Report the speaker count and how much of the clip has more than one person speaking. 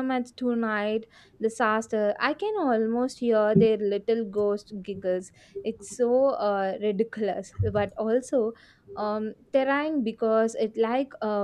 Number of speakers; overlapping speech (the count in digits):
1, no overlap